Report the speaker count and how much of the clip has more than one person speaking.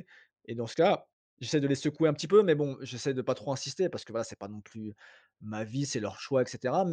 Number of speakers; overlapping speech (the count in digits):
1, no overlap